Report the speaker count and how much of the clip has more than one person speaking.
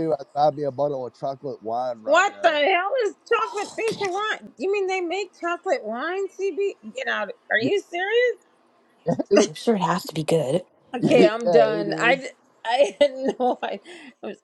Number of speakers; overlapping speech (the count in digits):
3, about 17%